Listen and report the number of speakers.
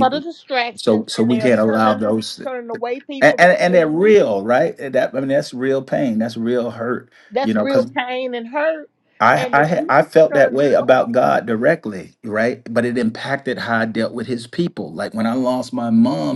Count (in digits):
2